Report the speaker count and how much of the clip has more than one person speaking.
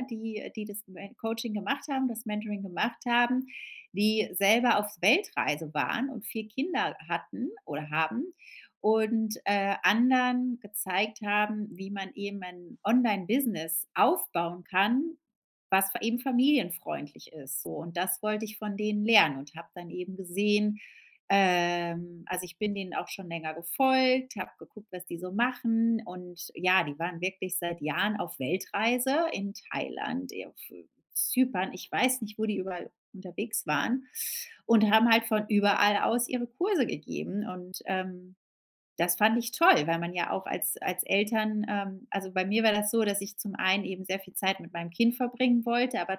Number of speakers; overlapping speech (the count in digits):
1, no overlap